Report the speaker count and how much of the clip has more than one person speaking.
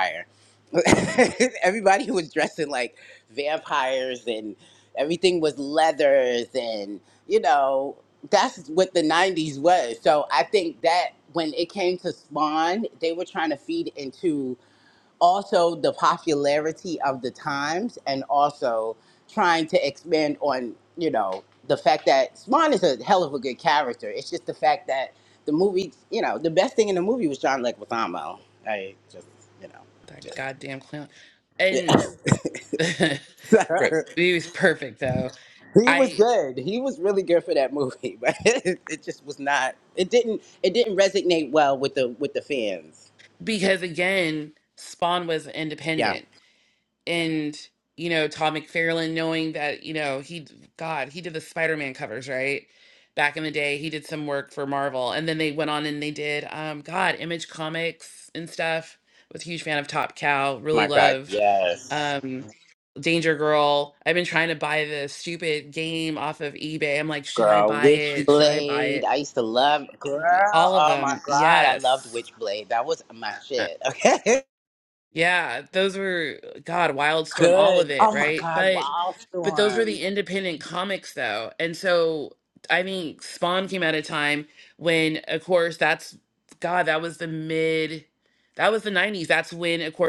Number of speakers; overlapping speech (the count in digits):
2, about 7%